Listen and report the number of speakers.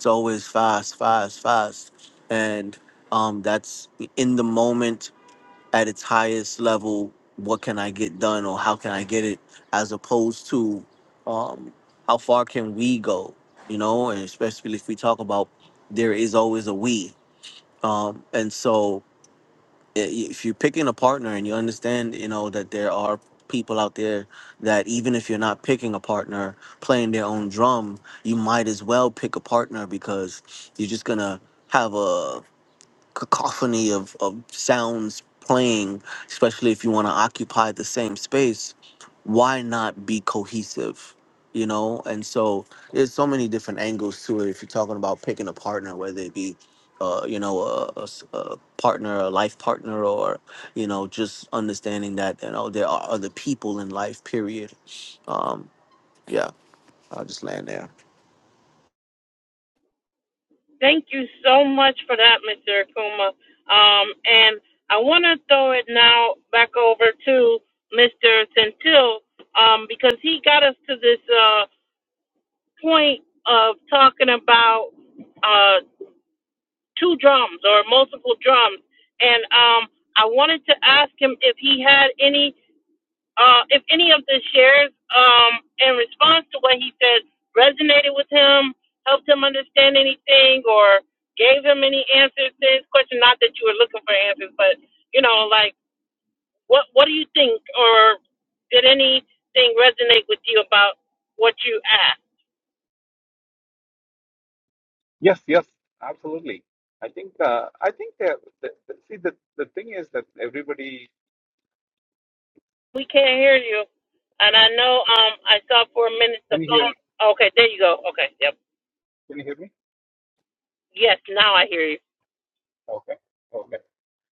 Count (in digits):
3